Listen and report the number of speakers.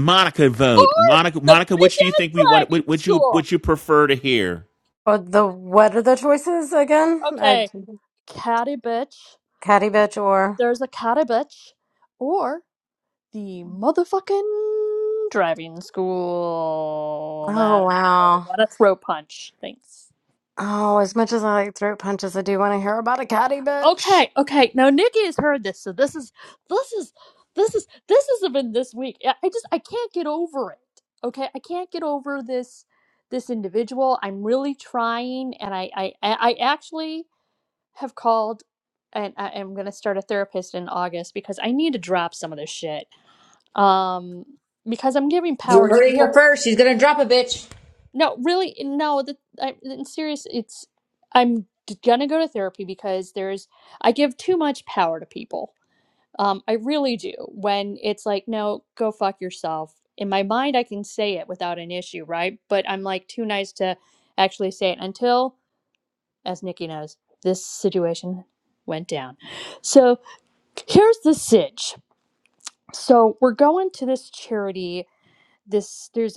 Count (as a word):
four